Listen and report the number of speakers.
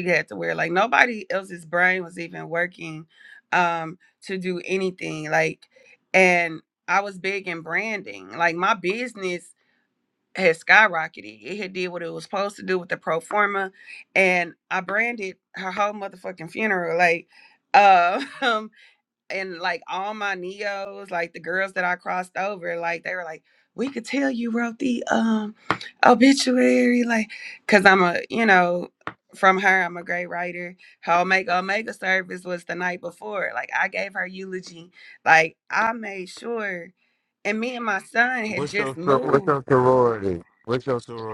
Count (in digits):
2